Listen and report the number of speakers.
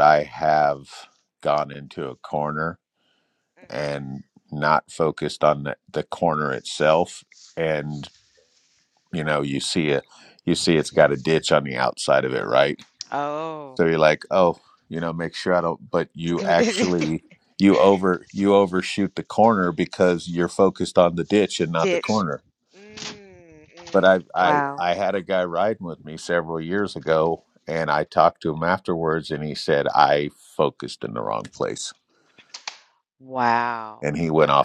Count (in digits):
2